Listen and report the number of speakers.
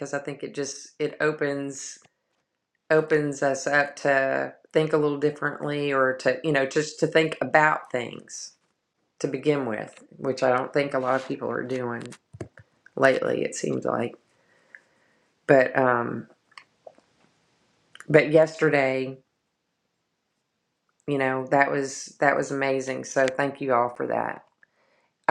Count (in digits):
1